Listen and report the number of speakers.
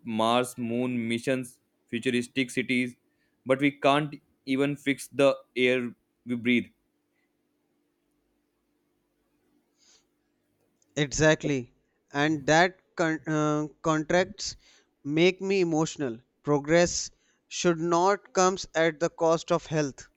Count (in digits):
2